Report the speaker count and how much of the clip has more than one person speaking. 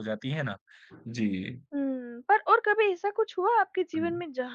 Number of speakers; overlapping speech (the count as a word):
two, about 4%